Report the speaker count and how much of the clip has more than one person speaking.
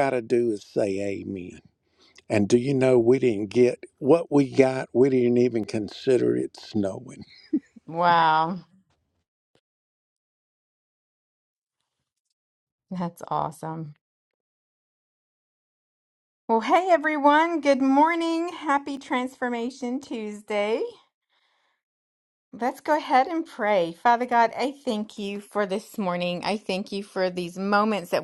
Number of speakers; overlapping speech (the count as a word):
two, no overlap